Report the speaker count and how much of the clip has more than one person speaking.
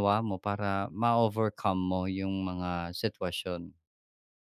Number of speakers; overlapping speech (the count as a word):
one, no overlap